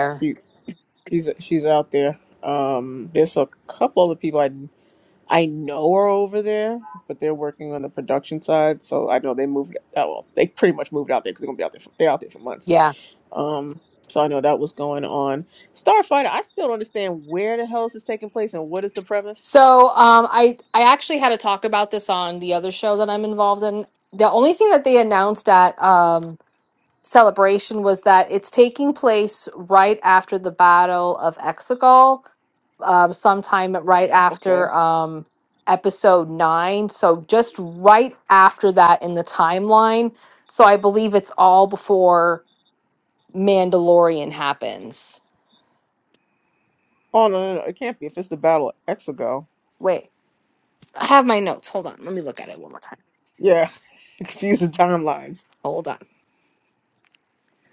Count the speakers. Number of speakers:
2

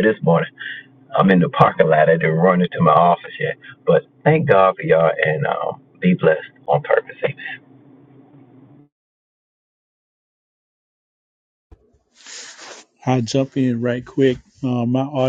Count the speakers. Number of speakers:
2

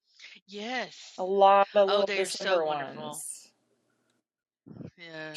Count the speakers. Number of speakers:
2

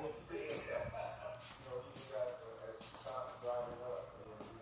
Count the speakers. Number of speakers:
0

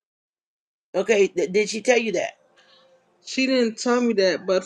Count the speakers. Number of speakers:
2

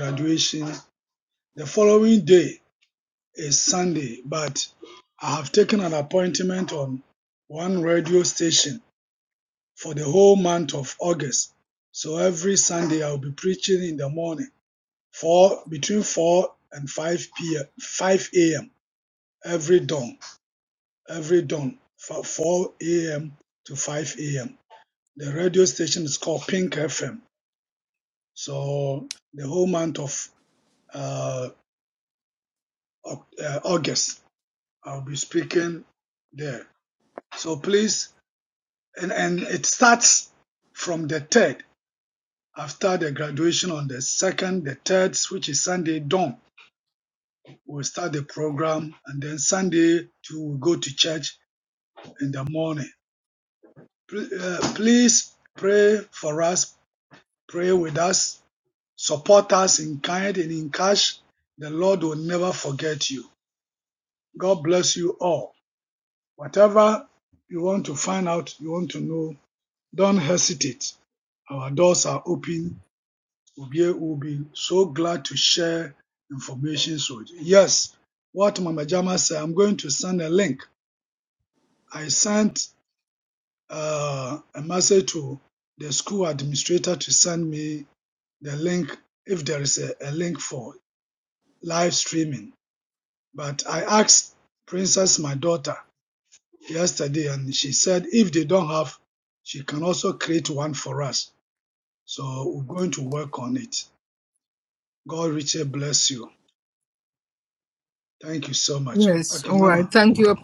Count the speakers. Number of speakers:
2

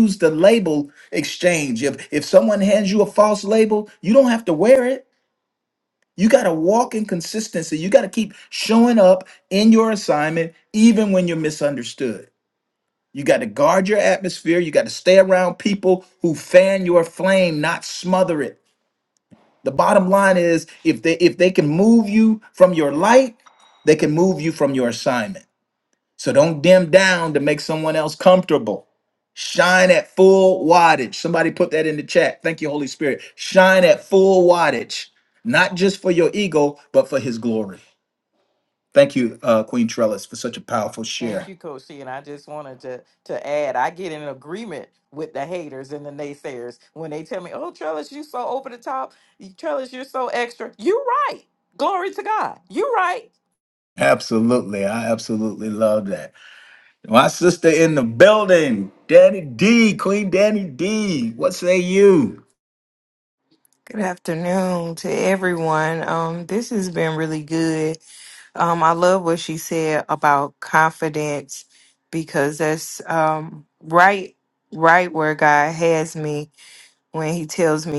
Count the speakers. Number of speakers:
3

